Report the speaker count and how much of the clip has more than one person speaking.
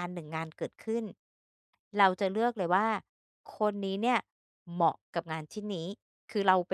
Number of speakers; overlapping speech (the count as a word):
one, no overlap